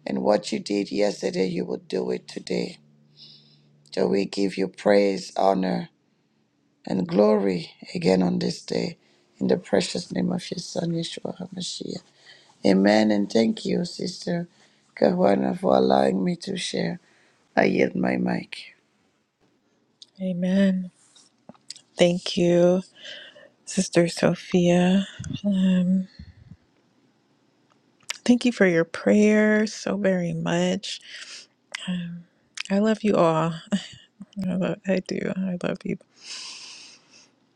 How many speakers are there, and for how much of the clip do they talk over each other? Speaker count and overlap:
two, no overlap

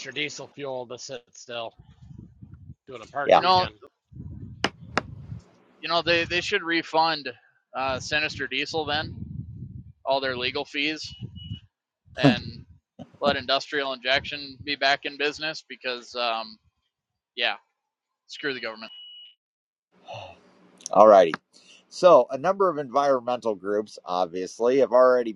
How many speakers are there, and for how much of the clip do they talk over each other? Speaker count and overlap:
three, about 2%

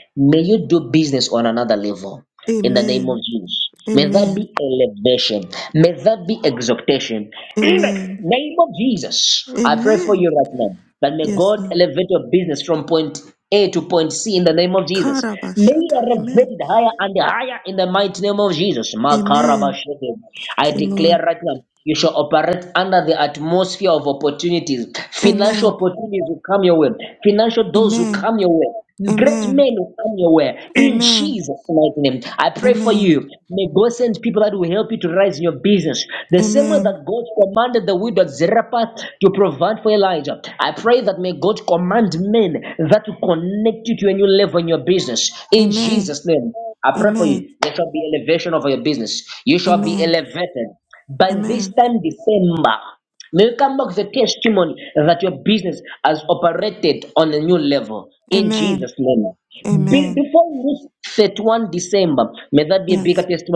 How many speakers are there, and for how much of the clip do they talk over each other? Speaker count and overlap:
two, about 19%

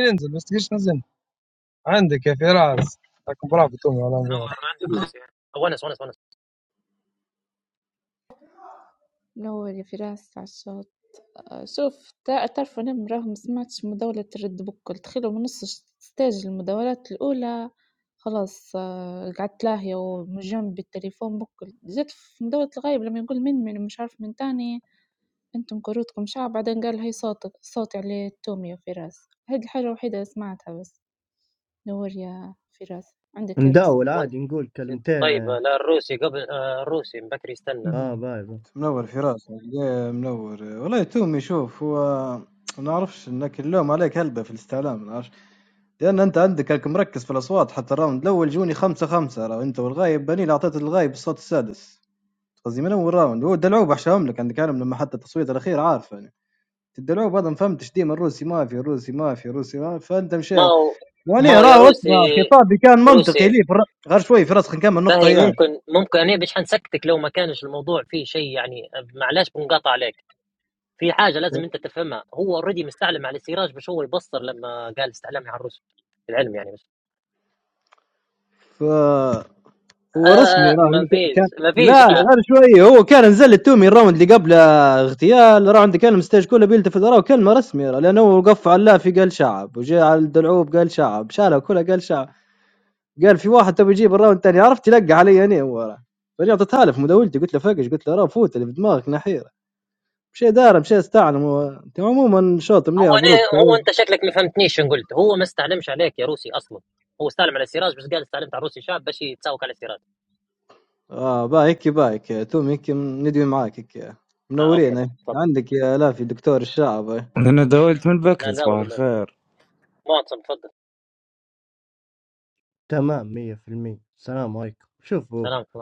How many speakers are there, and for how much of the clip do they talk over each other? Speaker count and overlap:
six, about 6%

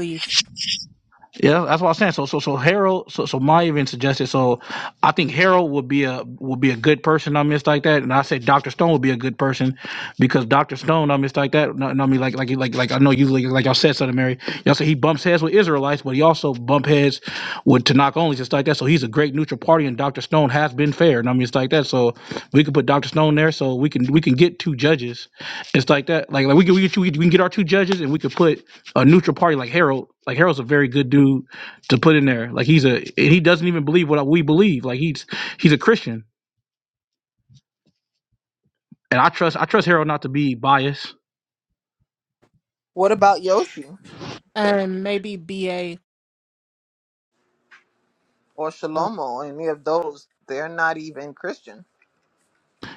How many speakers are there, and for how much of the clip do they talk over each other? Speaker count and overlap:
three, under 1%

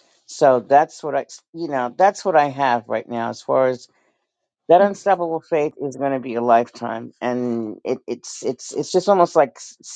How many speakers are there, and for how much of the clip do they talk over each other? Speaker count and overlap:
one, no overlap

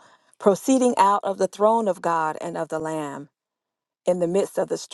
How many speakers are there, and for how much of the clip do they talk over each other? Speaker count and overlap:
one, no overlap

